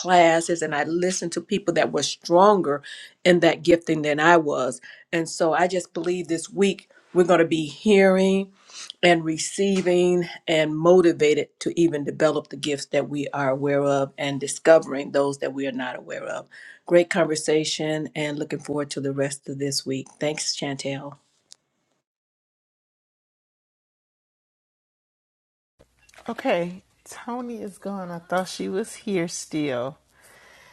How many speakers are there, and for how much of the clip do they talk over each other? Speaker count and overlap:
2, no overlap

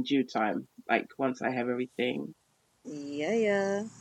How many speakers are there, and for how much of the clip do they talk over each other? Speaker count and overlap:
2, no overlap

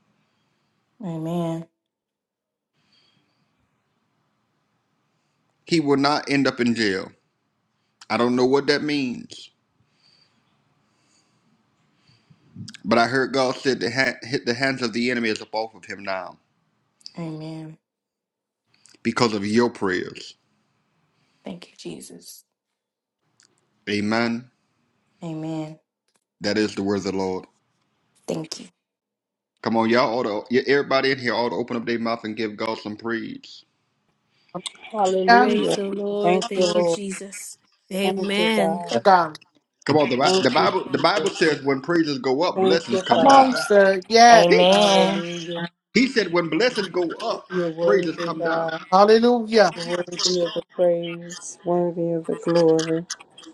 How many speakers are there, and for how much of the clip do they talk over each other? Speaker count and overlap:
5, about 12%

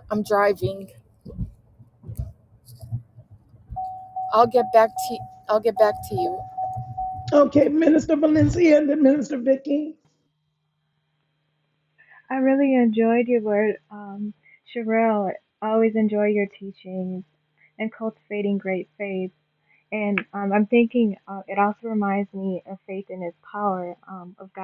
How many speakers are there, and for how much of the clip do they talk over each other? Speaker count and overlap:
3, no overlap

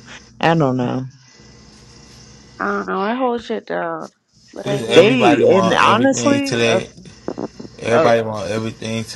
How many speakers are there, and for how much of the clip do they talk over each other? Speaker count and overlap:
3, about 27%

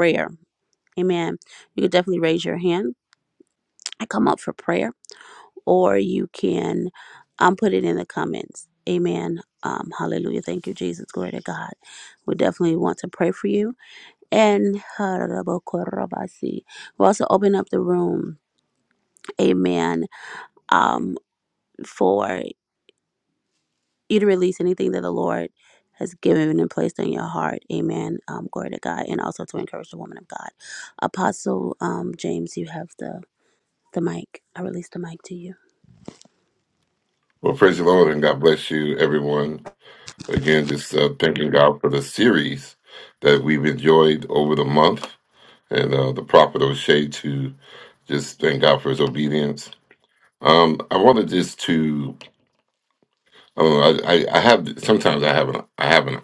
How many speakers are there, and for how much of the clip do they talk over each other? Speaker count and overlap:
2, no overlap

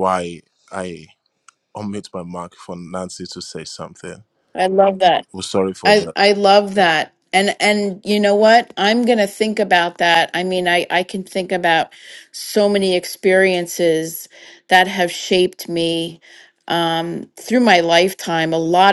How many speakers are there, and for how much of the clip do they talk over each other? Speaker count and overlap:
2, about 2%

